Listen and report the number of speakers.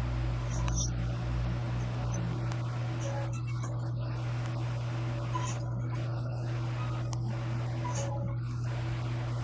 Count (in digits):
0